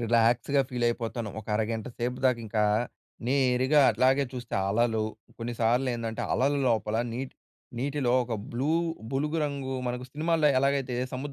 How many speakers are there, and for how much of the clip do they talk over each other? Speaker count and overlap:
1, no overlap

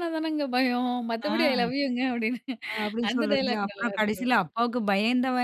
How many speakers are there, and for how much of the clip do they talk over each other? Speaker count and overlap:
2, about 25%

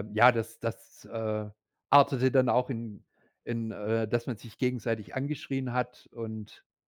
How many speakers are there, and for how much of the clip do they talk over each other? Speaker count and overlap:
1, no overlap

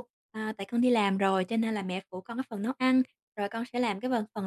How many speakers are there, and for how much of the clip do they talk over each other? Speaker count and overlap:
1, no overlap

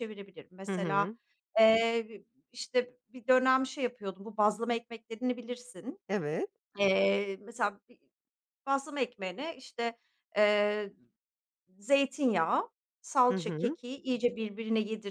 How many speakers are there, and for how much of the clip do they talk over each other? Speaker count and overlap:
2, about 6%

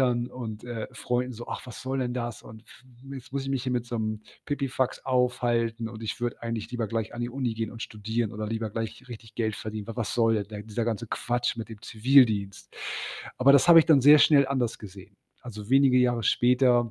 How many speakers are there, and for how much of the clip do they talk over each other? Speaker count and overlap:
1, no overlap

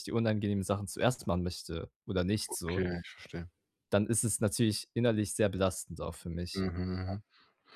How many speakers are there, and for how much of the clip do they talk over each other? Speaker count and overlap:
2, about 3%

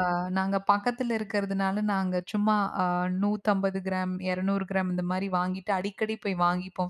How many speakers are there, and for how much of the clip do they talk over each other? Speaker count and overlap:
1, no overlap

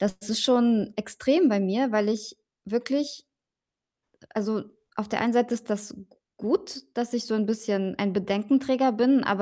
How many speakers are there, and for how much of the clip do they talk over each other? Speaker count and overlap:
1, no overlap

